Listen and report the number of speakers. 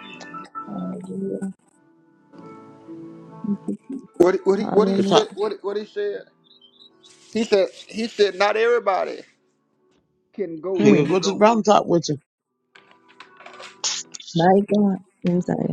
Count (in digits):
3